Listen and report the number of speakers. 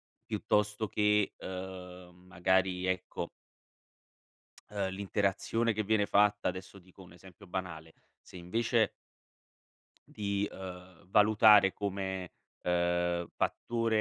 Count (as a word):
one